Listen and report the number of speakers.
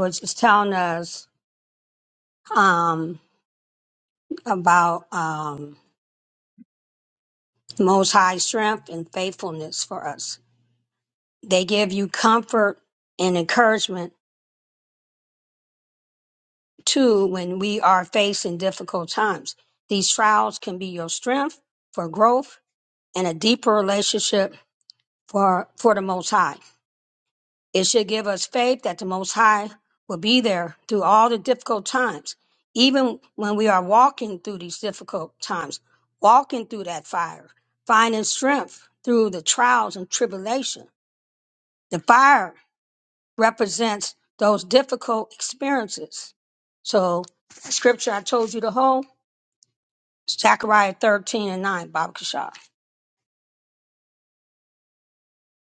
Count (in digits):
1